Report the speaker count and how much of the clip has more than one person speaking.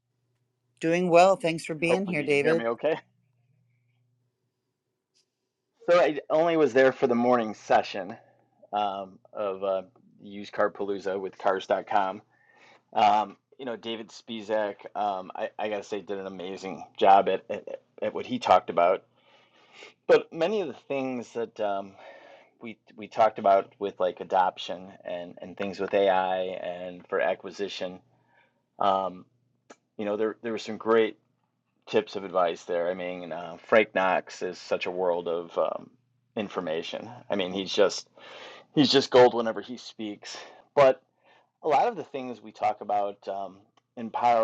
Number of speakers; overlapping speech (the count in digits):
2, about 2%